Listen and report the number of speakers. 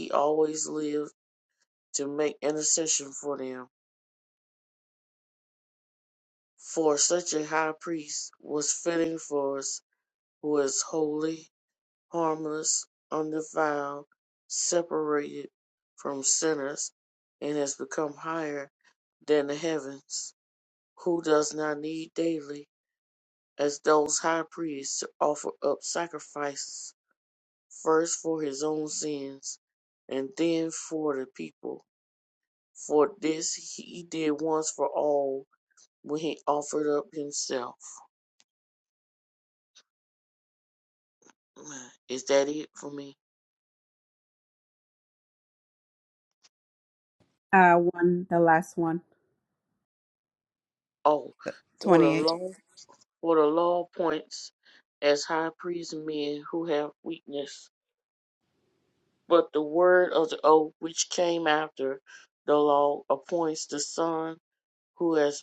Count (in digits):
2